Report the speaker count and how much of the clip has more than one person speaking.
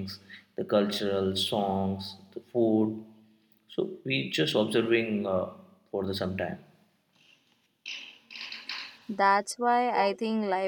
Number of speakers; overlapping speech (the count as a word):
two, no overlap